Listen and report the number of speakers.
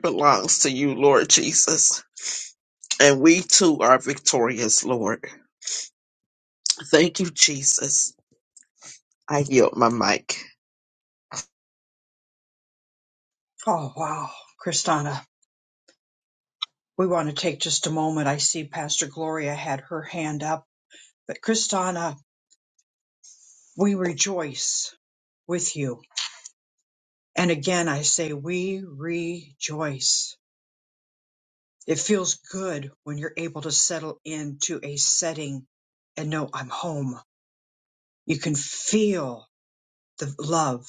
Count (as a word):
two